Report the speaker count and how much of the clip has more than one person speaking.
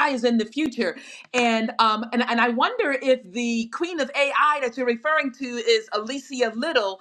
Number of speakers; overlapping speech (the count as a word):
one, no overlap